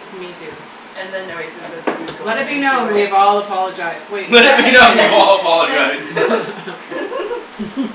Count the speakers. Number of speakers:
3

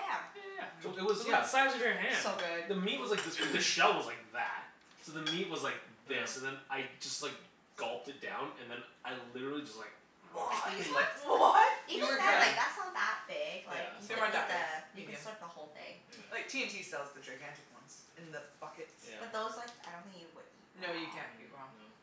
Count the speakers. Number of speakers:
4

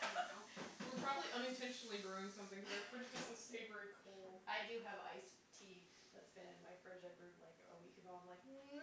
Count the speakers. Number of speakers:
2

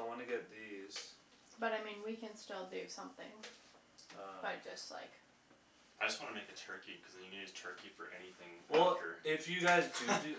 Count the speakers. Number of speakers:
3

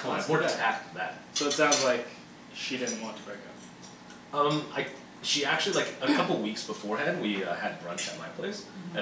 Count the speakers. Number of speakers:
2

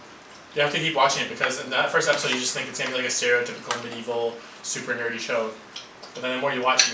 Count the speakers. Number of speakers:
1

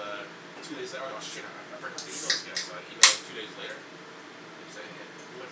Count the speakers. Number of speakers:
1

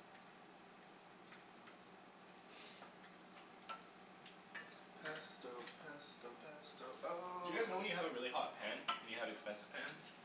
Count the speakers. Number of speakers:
2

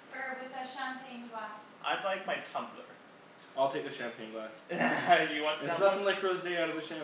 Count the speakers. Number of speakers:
3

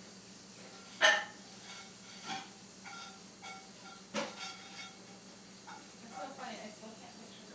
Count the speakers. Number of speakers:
1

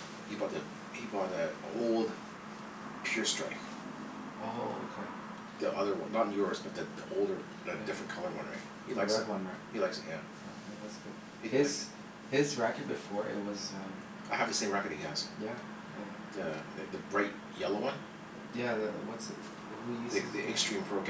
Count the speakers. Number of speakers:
2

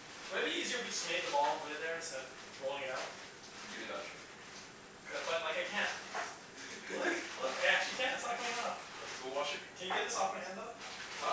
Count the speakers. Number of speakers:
2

